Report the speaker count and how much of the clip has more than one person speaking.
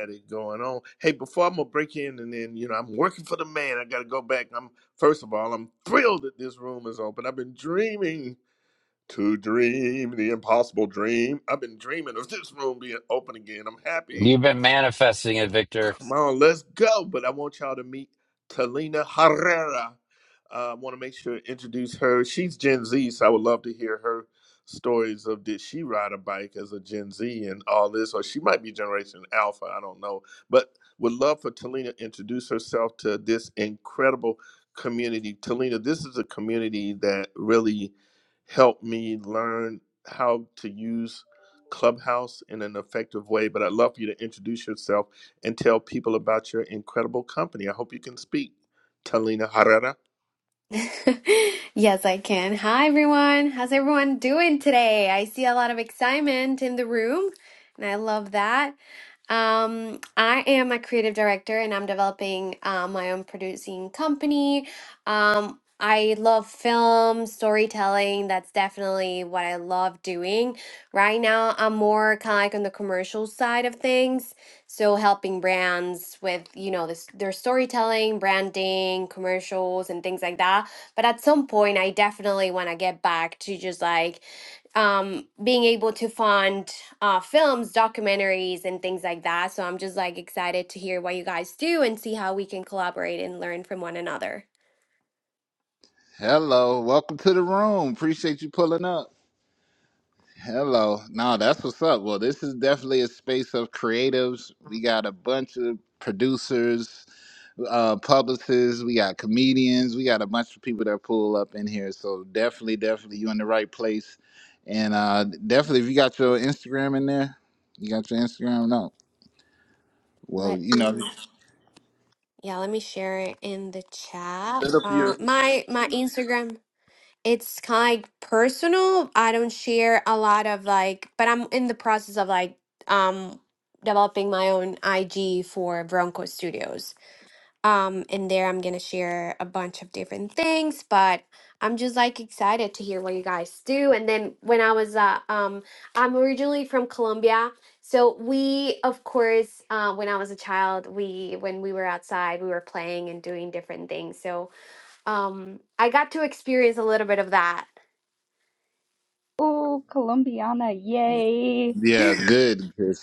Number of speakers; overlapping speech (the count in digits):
5, about 1%